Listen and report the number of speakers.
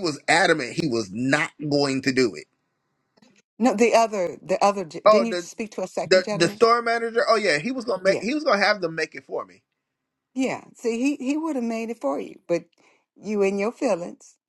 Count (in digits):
2